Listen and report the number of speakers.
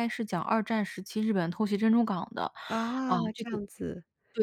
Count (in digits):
2